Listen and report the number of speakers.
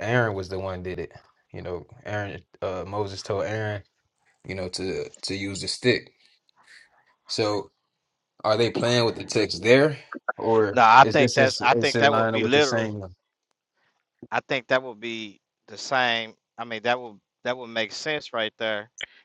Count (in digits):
2